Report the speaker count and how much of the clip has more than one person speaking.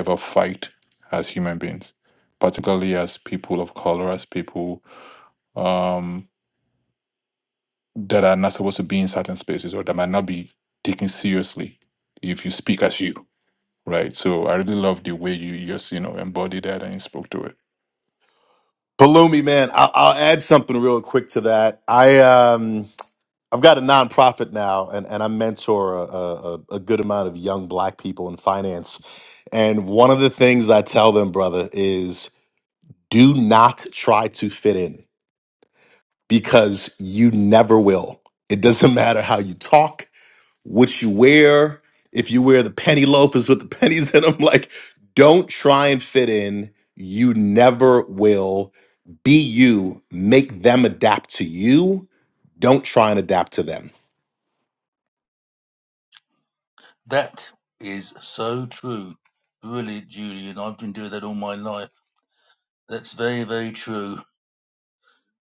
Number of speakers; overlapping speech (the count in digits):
3, no overlap